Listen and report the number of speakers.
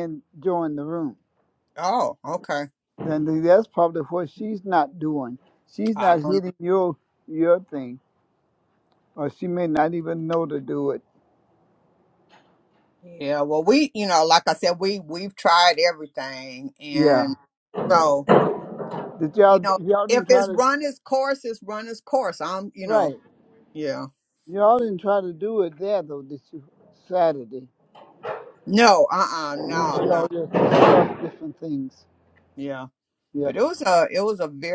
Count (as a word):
two